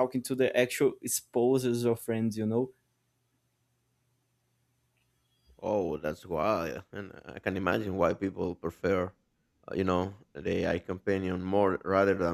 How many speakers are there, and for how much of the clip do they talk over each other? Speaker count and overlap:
two, no overlap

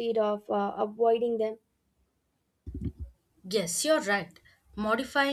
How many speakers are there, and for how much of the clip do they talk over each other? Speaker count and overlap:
two, no overlap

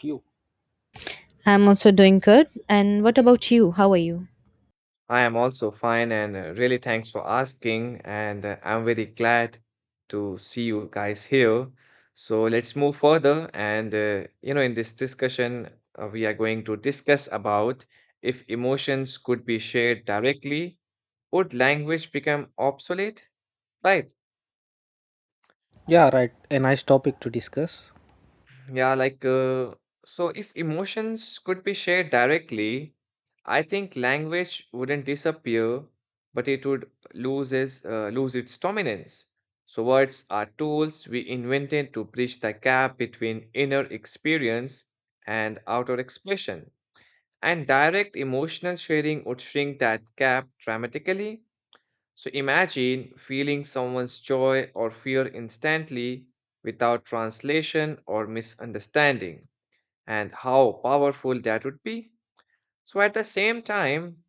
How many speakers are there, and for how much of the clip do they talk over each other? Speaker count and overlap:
three, no overlap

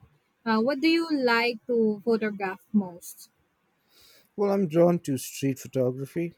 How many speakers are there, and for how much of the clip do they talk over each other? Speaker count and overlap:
two, no overlap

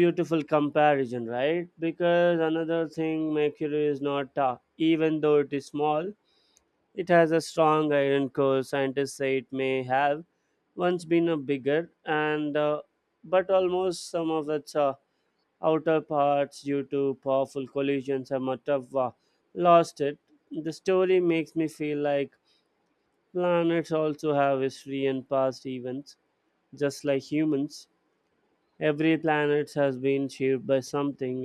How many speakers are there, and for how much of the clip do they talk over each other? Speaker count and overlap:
one, no overlap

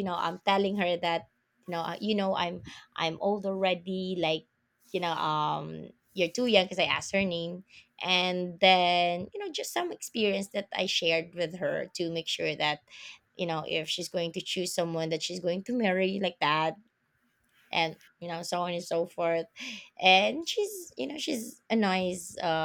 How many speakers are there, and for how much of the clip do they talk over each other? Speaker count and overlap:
one, no overlap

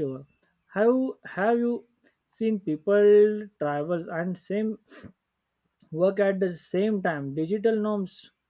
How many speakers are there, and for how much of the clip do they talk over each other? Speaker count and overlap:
one, no overlap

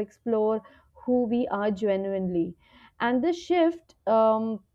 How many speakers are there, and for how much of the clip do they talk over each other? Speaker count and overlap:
one, no overlap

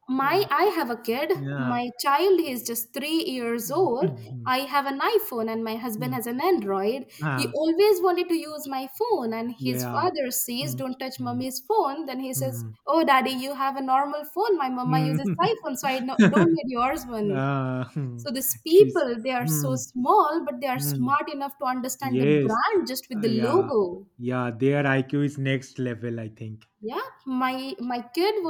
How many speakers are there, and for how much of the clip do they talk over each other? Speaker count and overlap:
two, about 18%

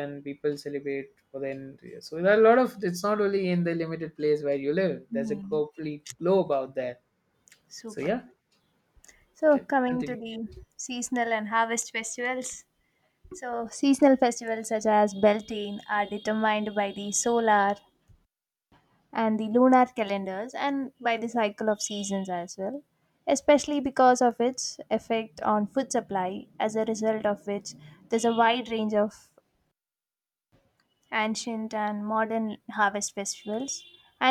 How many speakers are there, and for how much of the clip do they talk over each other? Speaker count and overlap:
two, about 4%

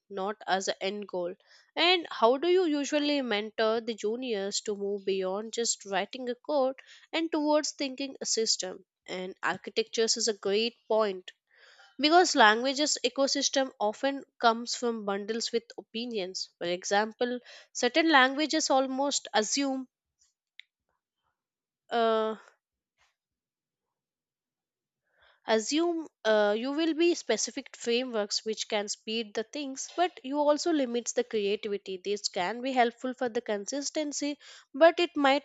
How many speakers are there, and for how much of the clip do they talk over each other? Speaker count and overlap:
one, no overlap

